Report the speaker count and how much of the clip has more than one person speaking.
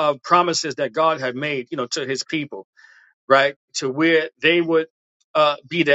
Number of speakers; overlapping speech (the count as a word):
one, no overlap